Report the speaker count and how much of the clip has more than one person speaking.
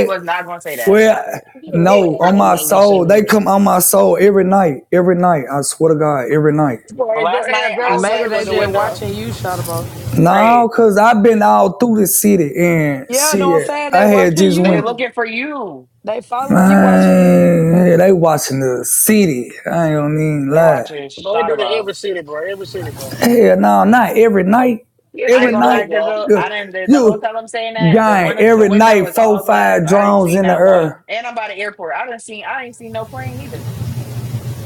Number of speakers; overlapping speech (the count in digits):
4, about 38%